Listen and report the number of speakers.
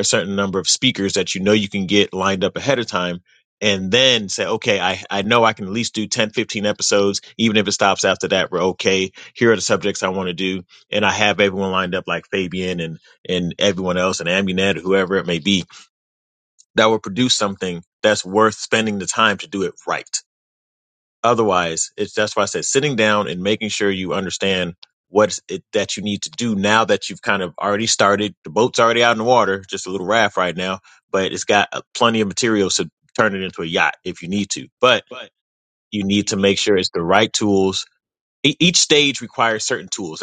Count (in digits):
1